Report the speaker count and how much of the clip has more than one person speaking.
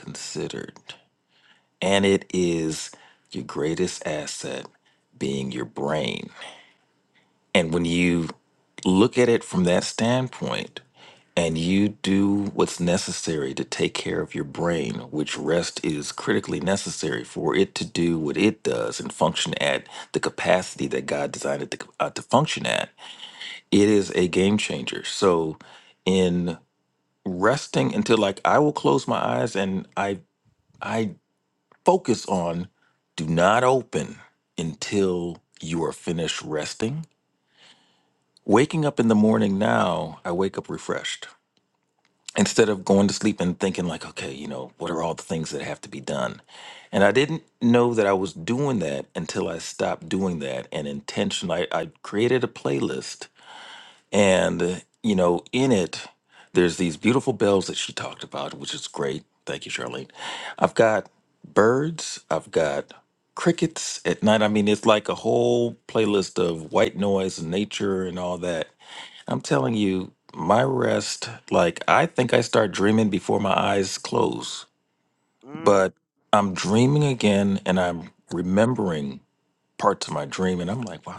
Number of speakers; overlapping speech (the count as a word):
one, no overlap